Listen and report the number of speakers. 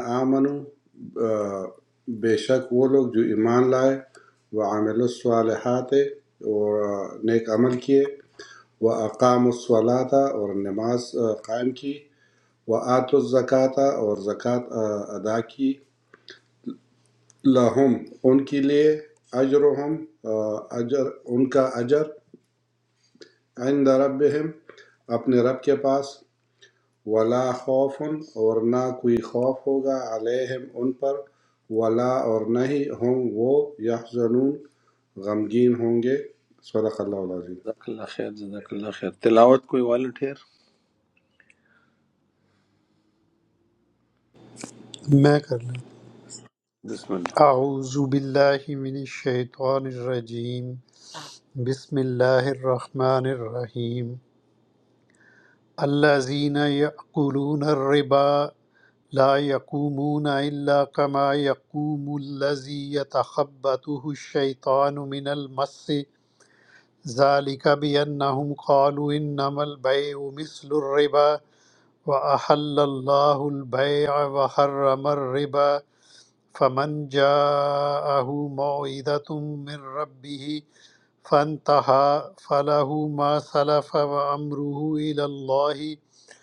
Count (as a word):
three